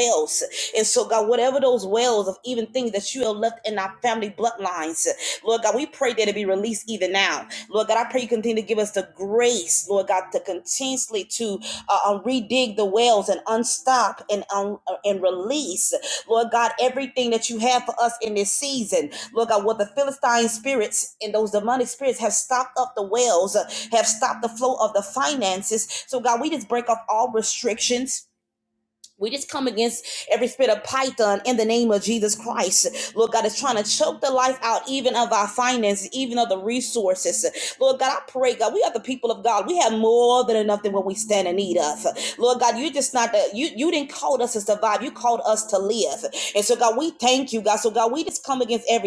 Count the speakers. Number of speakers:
1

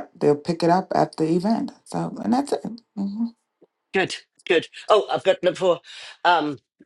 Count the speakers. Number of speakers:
2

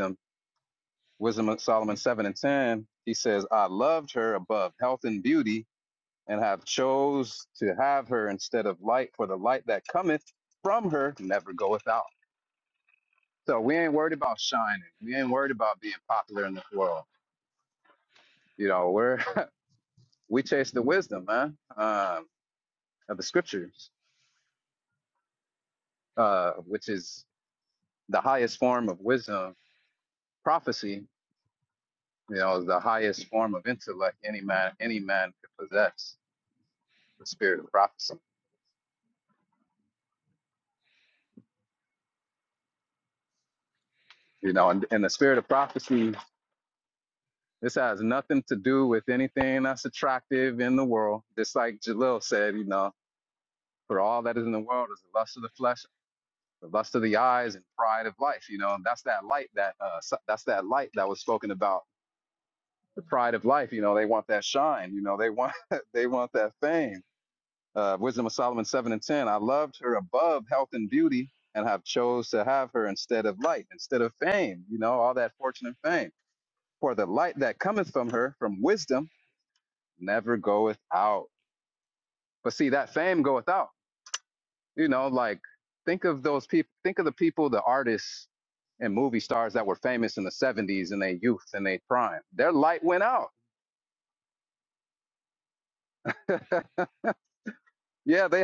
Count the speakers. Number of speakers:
1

